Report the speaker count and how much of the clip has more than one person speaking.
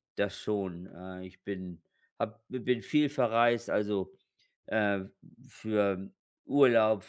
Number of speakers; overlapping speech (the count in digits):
1, no overlap